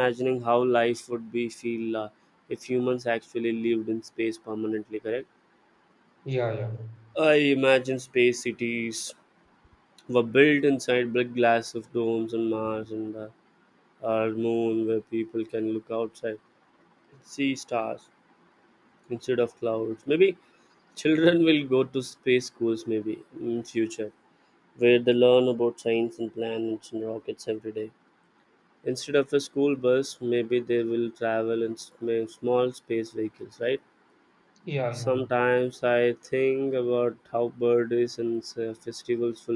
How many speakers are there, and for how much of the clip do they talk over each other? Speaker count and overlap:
2, under 1%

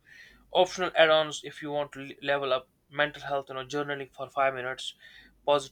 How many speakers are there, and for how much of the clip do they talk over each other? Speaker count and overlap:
1, no overlap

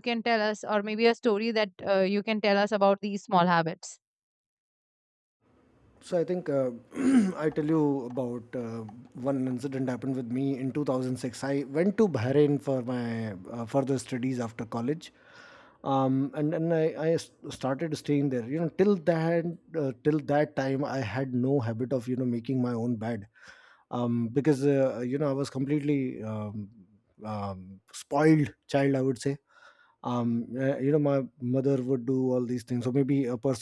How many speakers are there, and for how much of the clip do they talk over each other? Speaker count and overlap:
2, no overlap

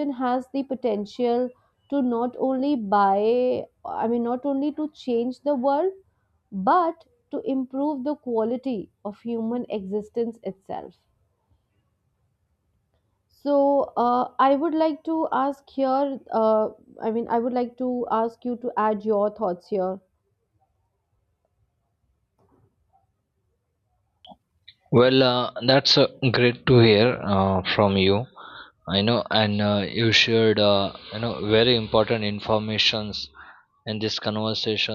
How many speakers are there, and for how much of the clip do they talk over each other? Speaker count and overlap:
2, no overlap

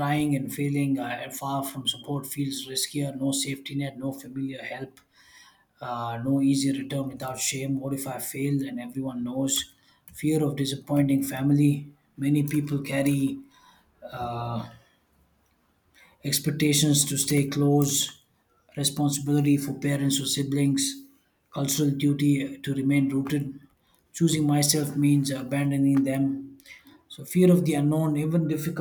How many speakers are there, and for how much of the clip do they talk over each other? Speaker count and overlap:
1, no overlap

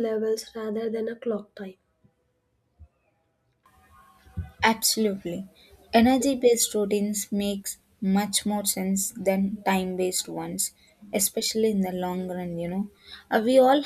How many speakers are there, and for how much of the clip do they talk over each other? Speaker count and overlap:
2, no overlap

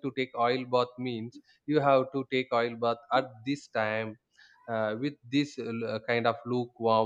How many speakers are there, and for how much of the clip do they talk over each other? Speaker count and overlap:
1, no overlap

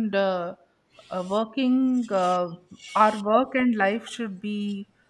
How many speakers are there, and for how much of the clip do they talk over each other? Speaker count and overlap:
1, no overlap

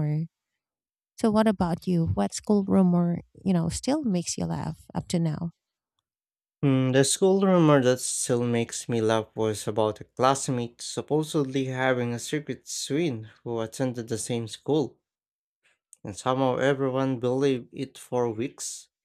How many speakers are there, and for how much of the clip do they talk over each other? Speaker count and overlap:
2, no overlap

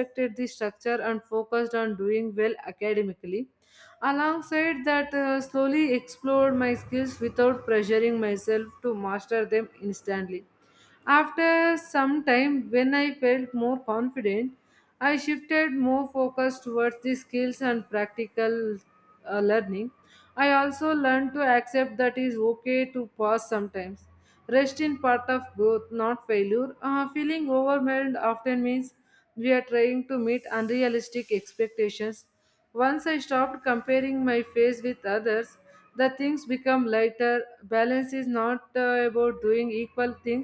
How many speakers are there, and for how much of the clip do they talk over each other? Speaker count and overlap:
1, no overlap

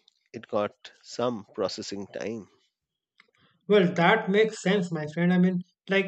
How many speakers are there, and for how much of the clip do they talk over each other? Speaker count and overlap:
2, no overlap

